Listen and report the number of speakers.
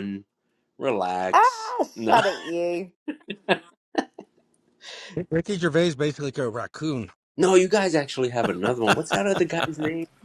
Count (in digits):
3